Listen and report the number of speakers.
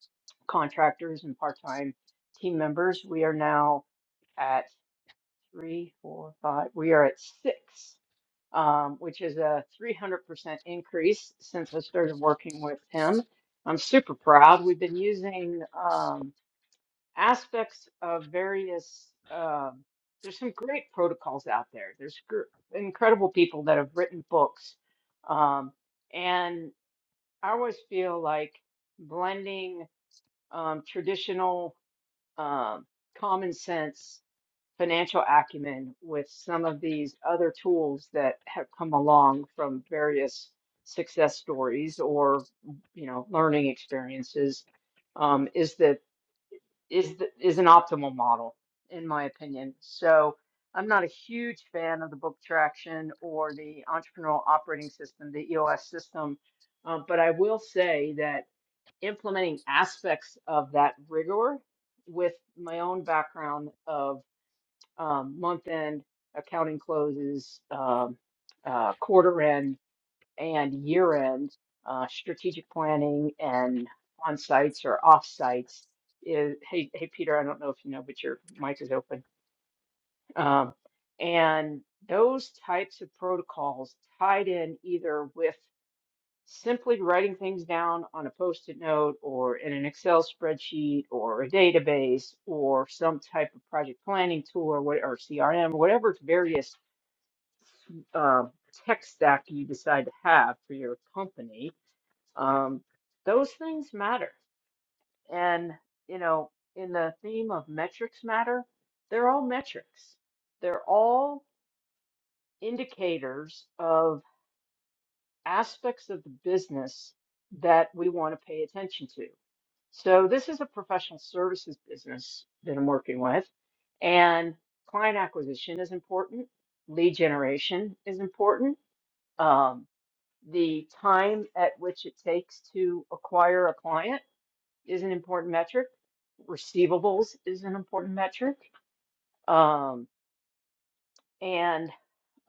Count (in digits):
1